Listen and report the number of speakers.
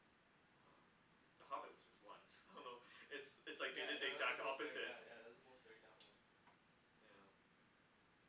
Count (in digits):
2